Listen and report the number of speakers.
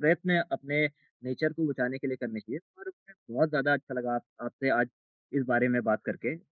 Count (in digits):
1